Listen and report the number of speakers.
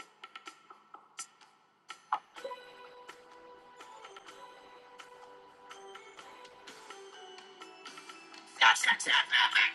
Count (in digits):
0